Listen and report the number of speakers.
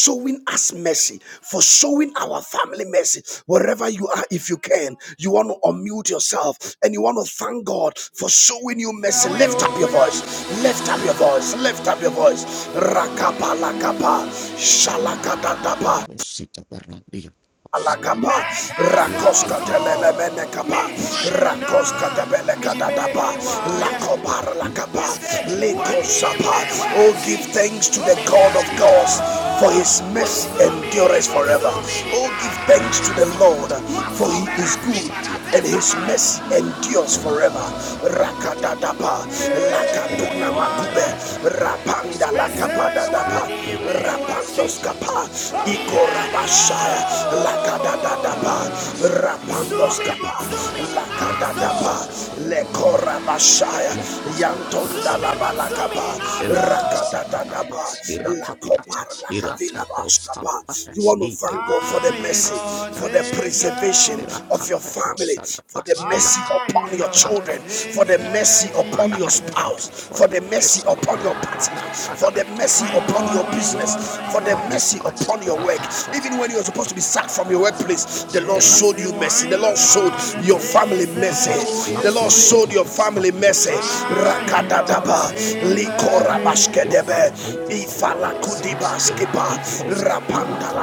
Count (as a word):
two